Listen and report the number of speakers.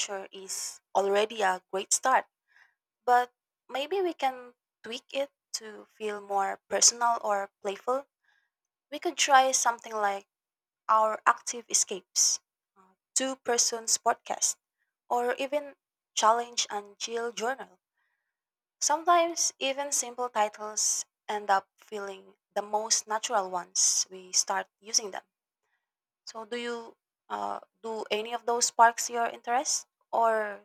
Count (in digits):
1